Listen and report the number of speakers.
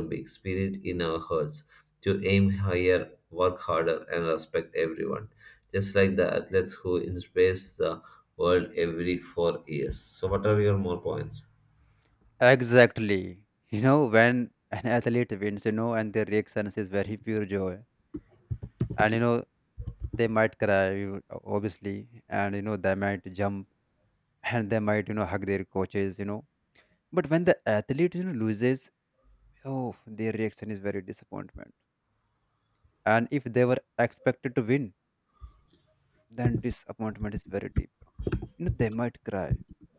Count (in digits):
2